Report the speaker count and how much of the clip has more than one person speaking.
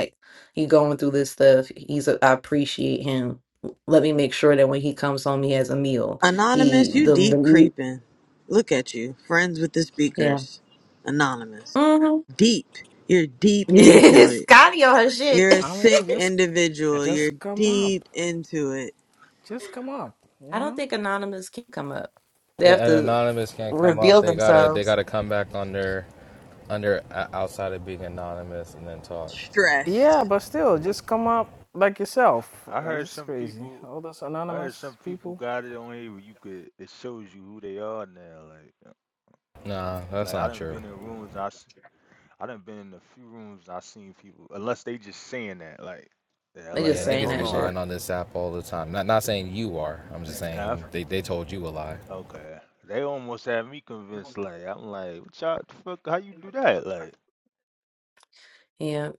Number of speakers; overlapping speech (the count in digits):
5, about 16%